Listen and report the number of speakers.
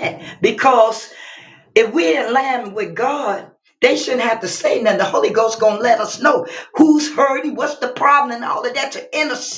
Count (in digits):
1